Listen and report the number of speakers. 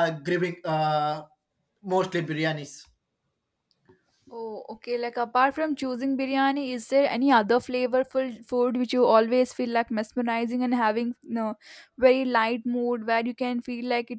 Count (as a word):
two